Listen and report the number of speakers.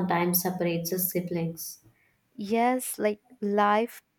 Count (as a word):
two